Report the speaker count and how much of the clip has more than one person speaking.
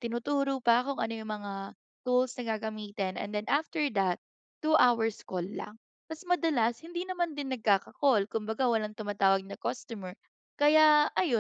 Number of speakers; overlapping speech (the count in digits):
1, no overlap